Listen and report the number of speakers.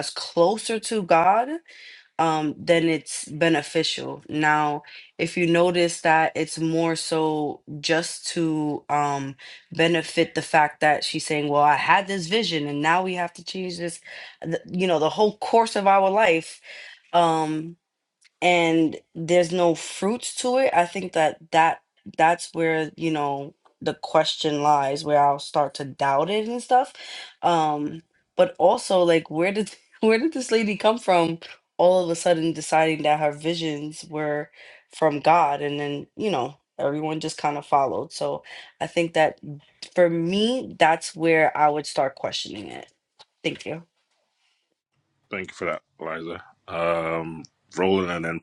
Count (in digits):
2